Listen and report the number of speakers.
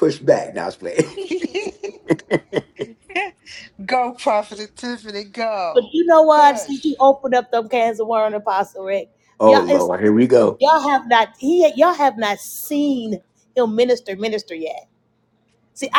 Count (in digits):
3